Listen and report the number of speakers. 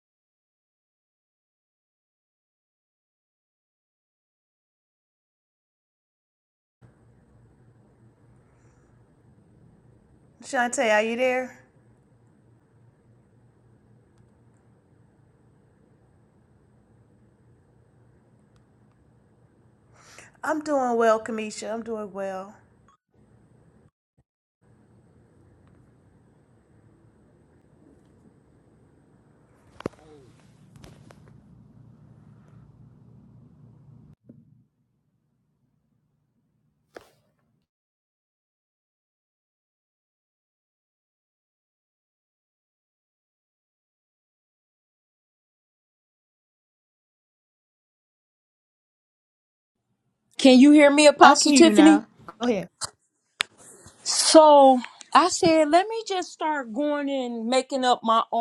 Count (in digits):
2